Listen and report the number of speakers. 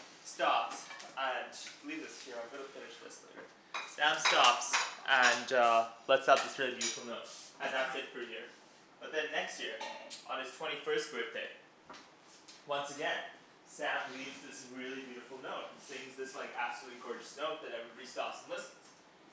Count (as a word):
one